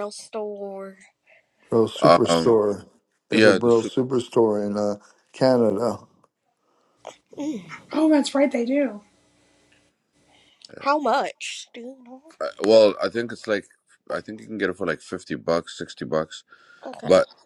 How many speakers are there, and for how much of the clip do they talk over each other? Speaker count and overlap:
4, about 7%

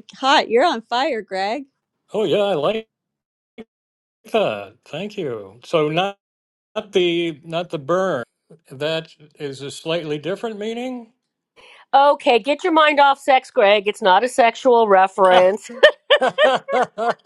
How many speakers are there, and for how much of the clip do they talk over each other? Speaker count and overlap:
3, no overlap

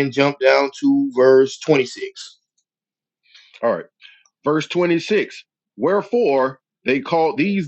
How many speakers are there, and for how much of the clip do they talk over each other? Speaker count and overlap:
2, no overlap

